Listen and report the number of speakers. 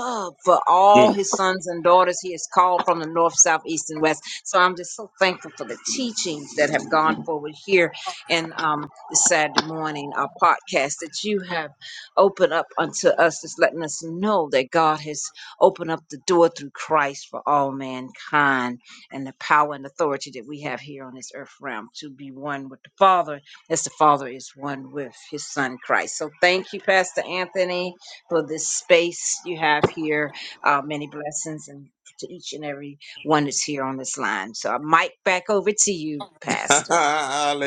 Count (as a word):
two